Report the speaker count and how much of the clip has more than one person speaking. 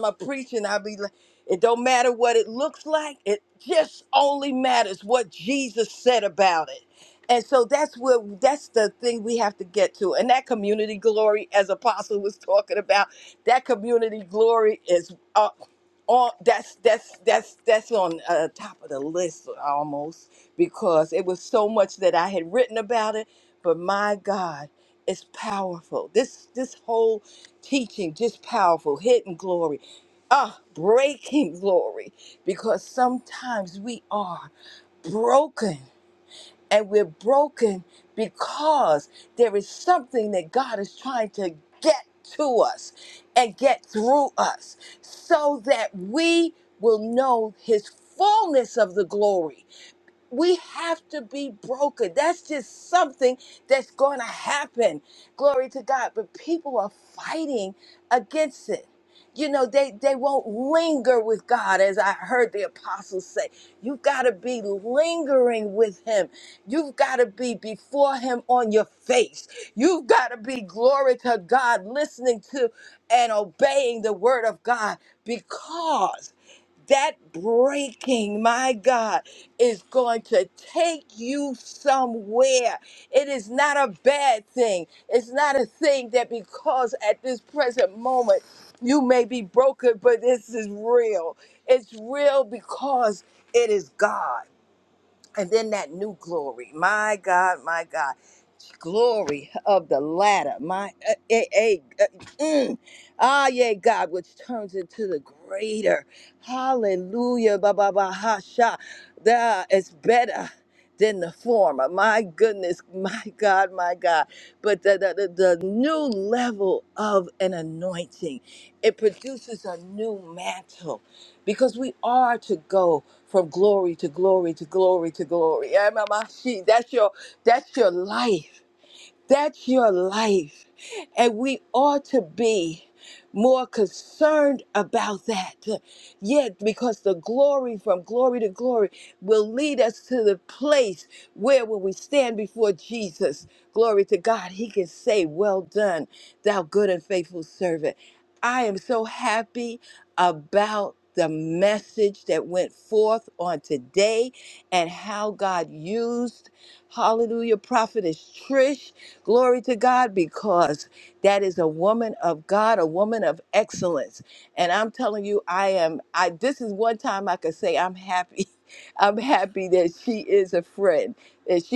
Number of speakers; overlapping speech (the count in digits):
1, no overlap